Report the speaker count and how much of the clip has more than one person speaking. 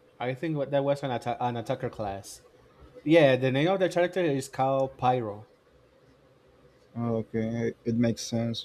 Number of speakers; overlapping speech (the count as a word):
two, no overlap